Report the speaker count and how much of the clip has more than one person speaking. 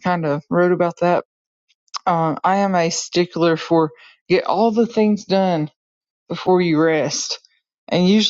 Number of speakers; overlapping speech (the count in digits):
1, no overlap